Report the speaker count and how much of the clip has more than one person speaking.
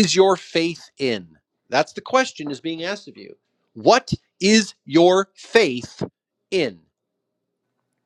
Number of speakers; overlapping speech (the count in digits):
1, no overlap